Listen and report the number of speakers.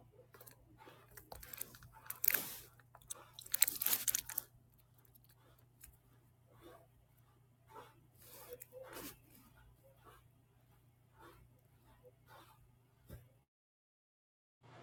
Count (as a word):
zero